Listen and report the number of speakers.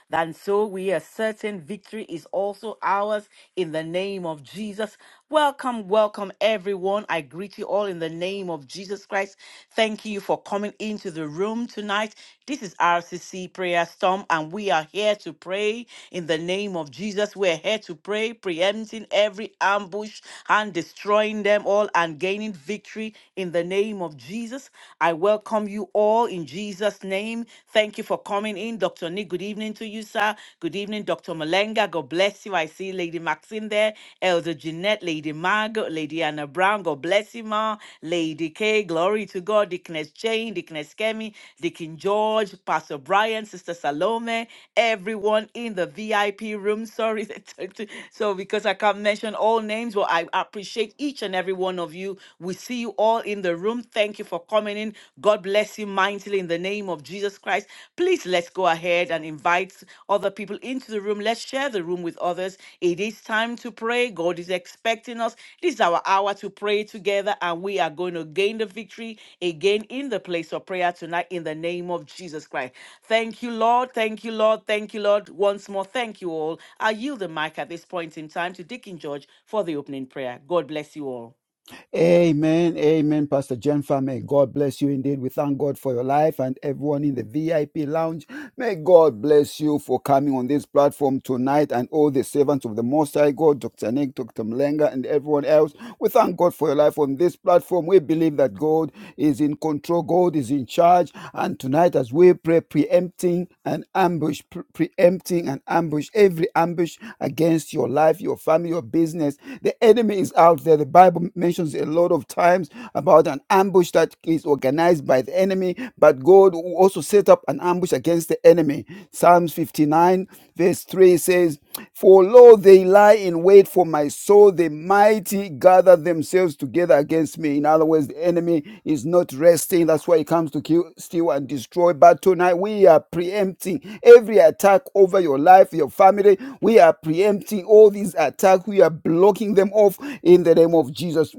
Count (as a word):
two